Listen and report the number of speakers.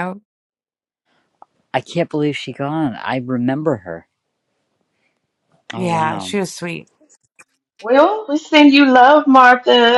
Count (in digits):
3